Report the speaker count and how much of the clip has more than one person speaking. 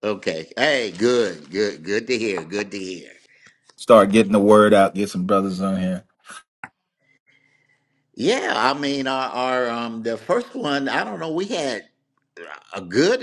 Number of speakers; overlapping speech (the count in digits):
2, no overlap